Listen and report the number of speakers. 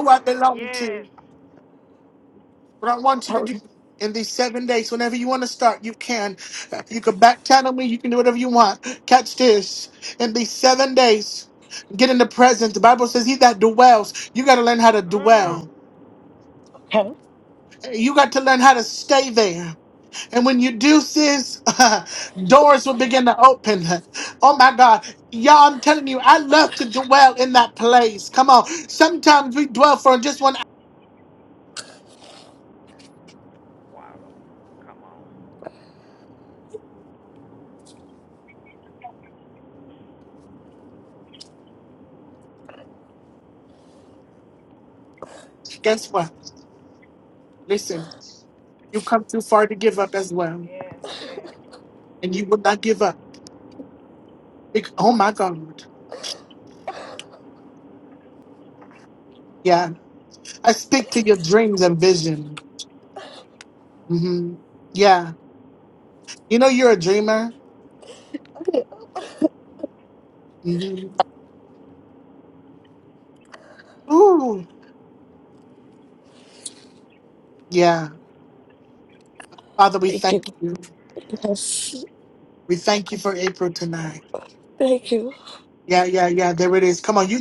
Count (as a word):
three